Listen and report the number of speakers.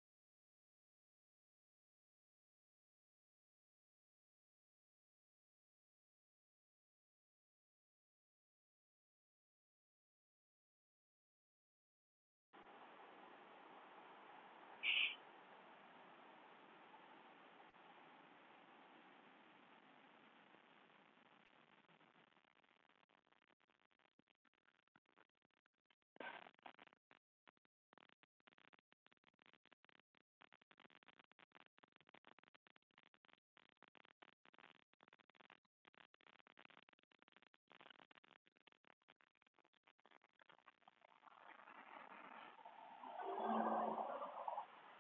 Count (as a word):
zero